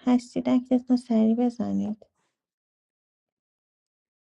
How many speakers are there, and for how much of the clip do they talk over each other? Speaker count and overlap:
1, no overlap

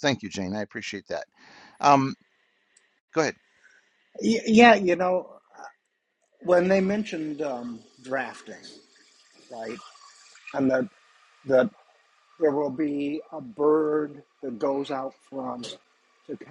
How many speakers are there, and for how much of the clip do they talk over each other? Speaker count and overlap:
2, no overlap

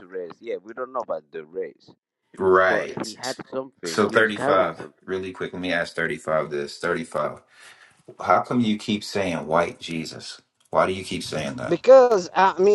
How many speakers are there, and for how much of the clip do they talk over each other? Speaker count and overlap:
3, about 11%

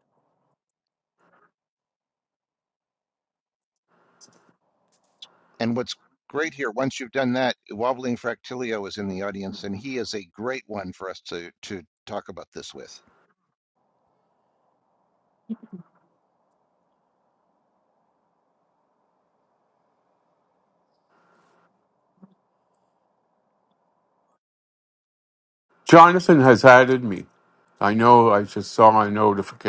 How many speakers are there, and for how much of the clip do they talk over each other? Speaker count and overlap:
2, no overlap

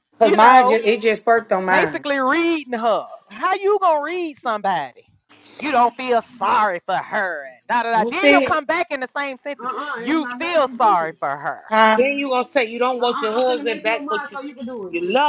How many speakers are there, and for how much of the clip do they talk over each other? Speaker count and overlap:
4, about 27%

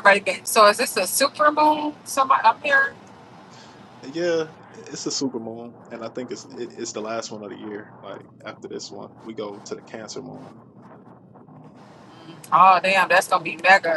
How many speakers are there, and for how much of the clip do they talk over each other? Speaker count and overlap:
2, no overlap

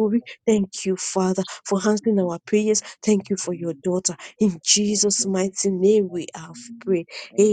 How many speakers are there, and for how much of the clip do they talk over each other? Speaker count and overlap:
1, no overlap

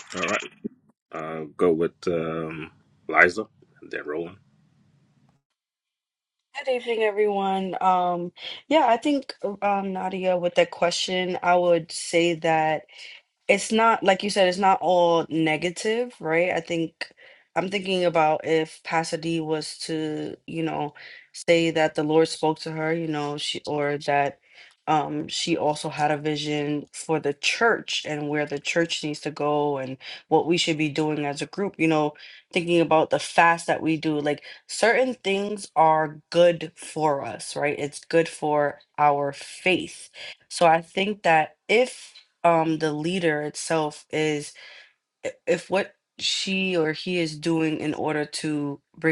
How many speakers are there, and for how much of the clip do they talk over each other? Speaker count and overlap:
2, no overlap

